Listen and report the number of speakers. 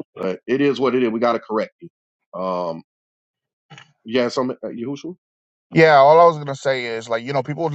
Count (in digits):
2